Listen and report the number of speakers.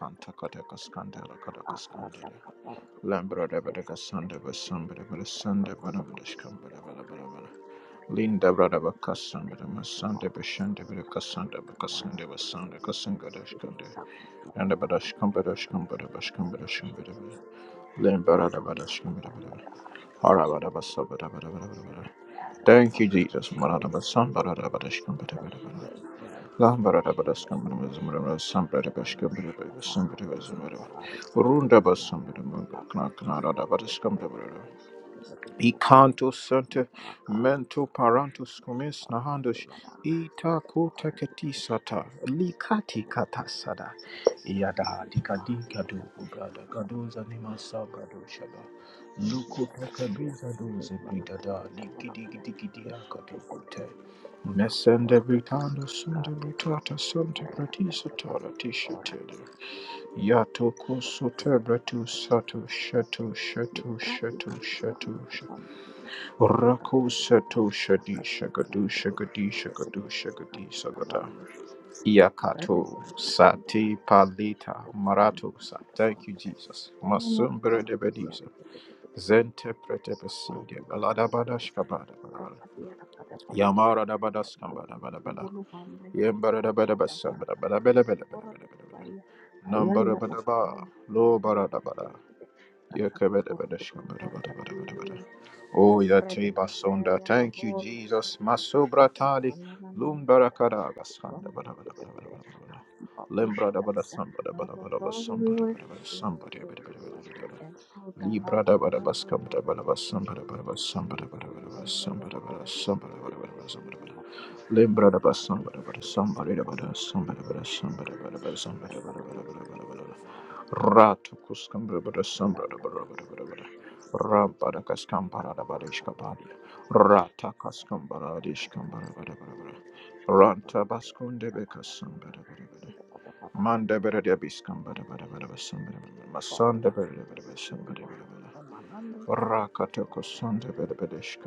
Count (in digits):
2